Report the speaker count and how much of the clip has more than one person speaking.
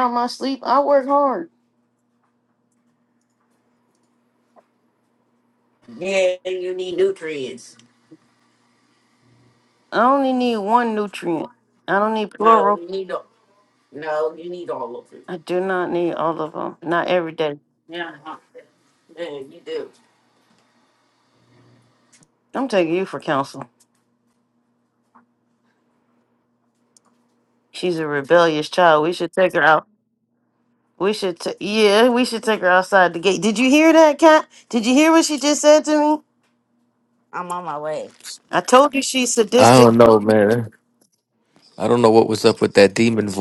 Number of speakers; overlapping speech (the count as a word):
three, about 2%